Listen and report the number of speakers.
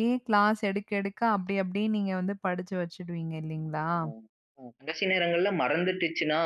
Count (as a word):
two